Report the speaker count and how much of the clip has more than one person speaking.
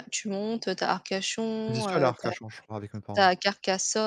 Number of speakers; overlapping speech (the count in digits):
2, about 19%